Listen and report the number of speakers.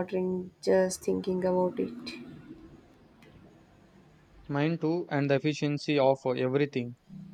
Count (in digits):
2